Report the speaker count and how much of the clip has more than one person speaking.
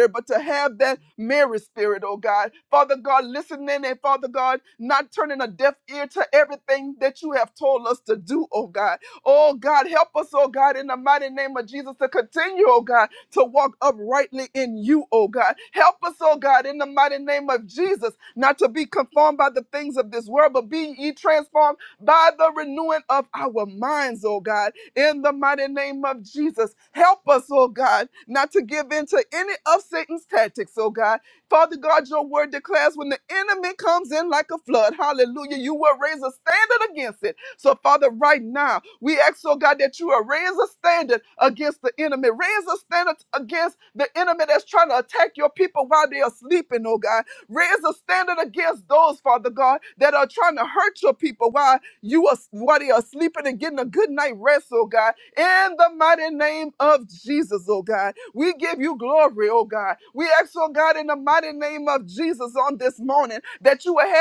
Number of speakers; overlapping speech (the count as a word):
one, no overlap